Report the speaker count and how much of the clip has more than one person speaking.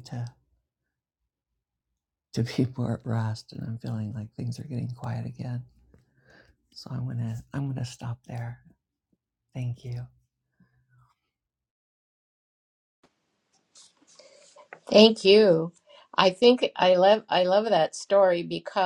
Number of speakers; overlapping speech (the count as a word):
two, no overlap